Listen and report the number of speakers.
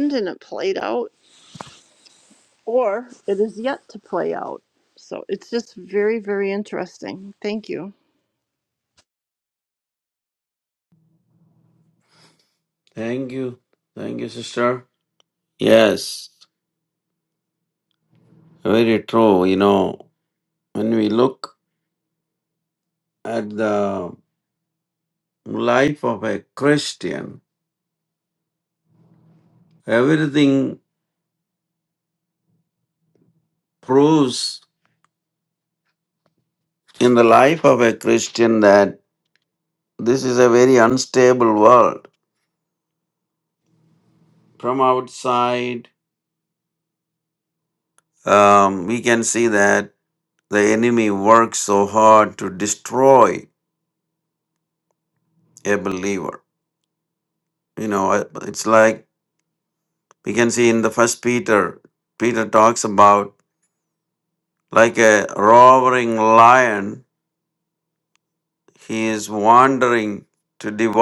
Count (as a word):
two